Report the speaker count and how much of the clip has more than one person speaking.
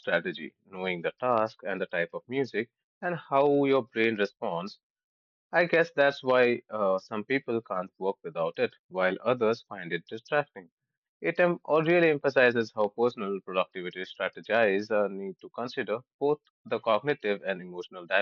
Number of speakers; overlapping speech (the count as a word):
one, no overlap